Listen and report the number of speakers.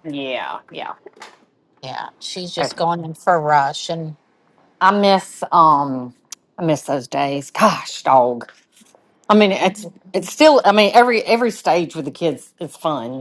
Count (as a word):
two